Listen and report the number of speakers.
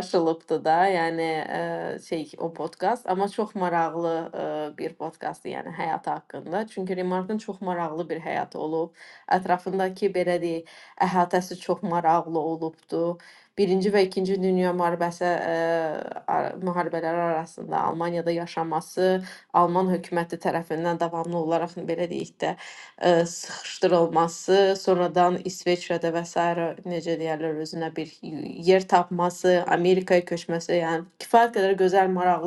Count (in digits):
1